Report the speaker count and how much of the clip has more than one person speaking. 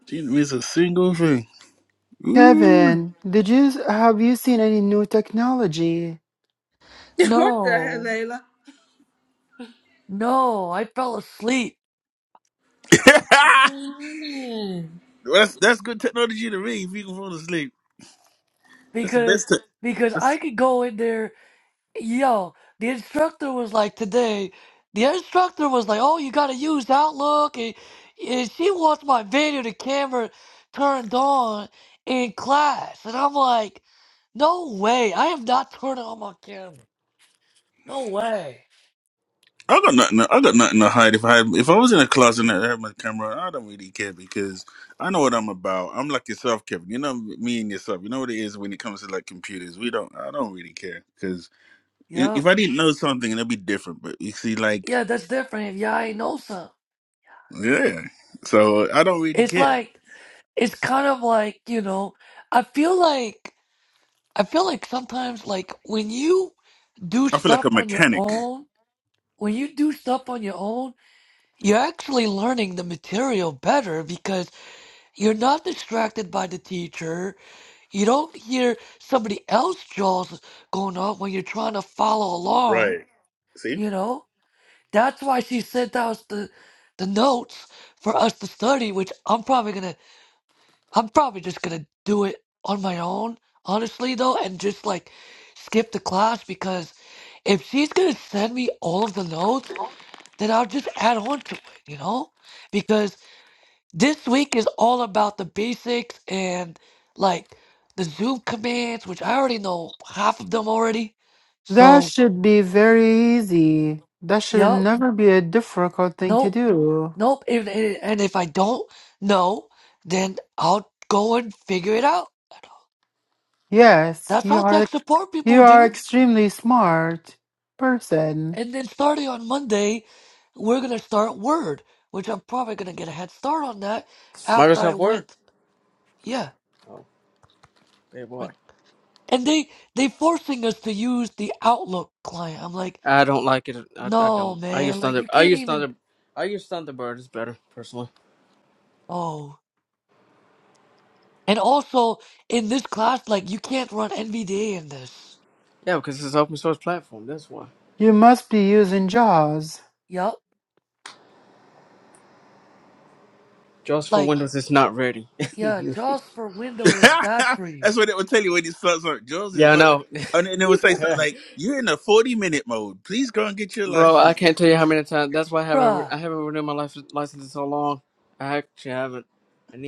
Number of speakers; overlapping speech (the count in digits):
5, about 6%